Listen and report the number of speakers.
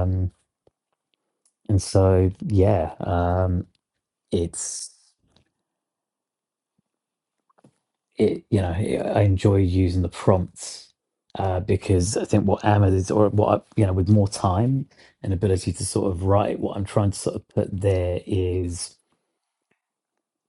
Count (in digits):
1